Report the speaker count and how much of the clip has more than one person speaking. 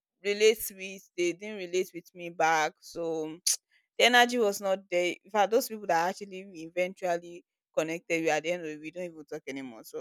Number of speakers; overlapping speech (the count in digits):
1, no overlap